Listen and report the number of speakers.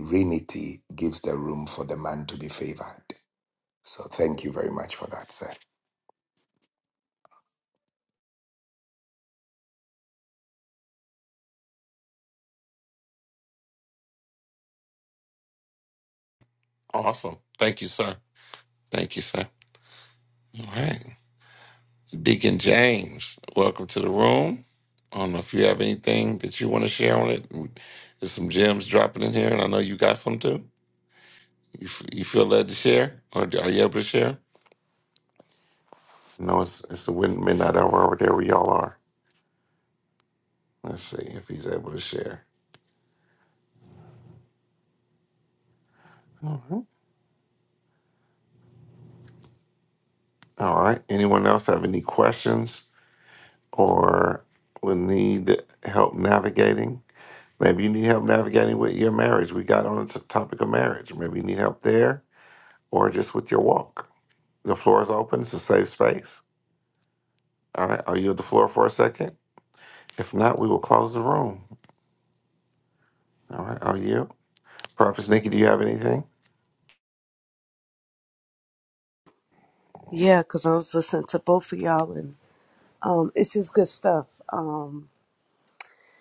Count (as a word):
three